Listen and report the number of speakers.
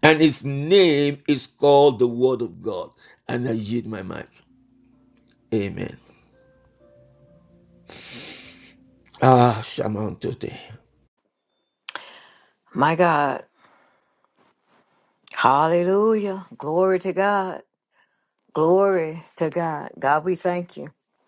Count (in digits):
2